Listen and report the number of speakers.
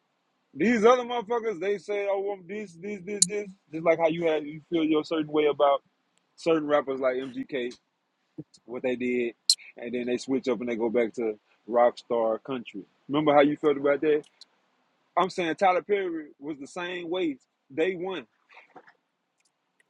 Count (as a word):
one